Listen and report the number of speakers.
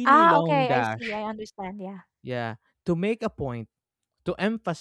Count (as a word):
two